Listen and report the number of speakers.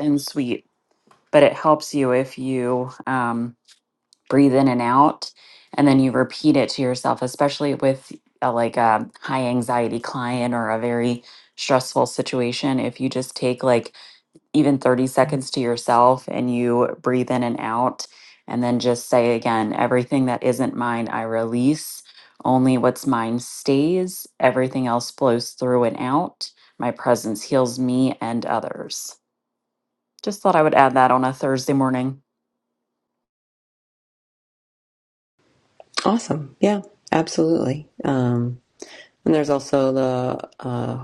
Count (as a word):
two